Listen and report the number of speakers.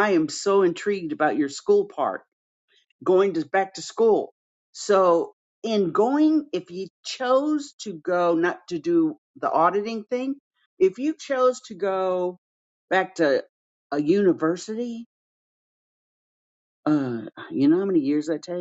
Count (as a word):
one